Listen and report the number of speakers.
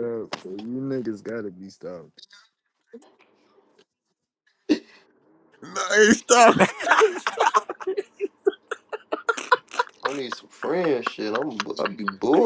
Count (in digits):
3